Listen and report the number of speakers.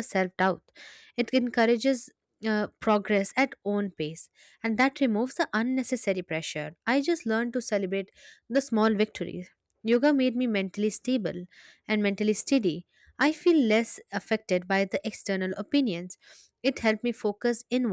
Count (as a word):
one